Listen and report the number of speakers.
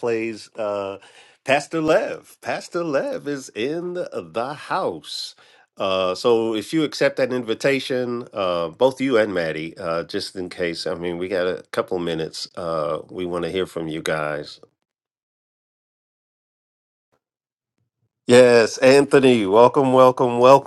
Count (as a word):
one